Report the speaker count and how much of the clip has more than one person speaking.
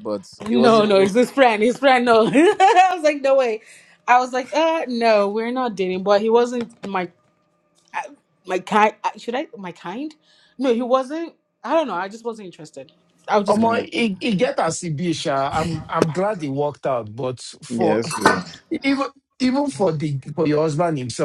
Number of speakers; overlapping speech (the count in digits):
3, about 6%